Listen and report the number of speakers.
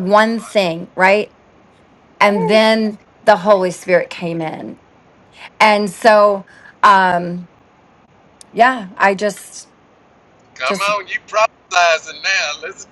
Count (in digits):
2